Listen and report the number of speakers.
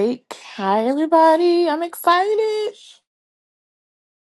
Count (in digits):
1